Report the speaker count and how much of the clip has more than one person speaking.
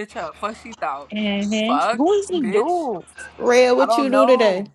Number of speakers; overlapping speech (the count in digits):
3, about 29%